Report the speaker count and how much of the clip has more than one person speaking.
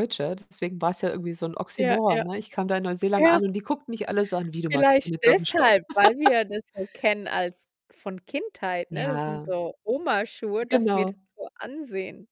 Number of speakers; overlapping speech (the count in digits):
2, about 22%